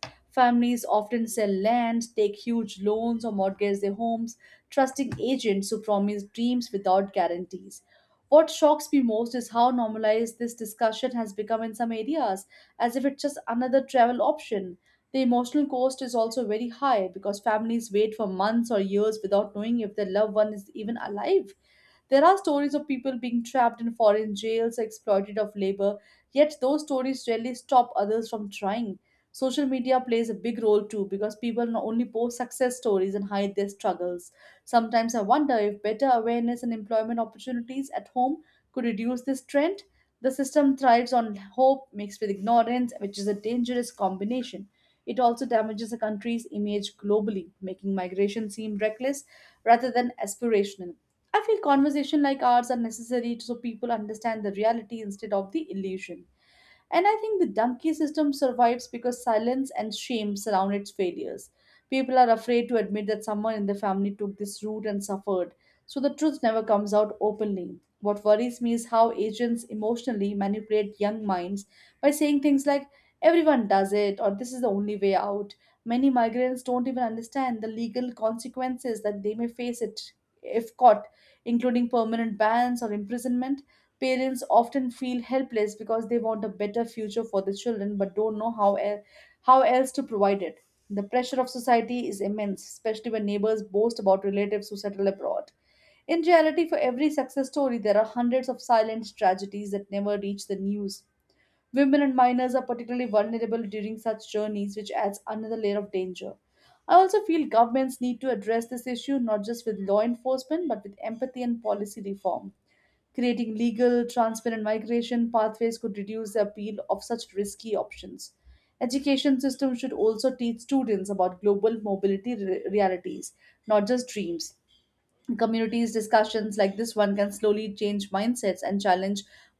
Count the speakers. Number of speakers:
1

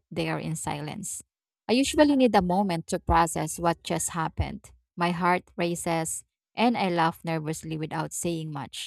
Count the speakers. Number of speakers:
1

